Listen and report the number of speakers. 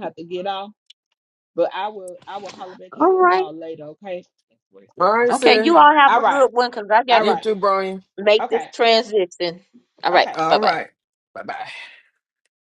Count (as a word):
three